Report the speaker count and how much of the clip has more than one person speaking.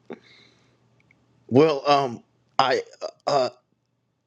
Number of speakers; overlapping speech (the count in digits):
1, no overlap